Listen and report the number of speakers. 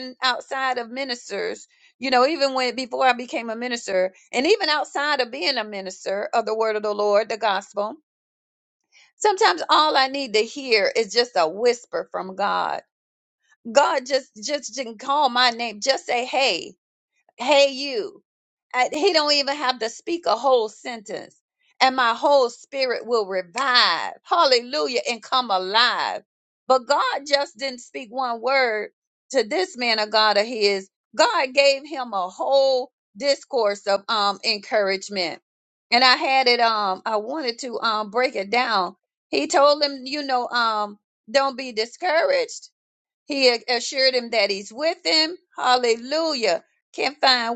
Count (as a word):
one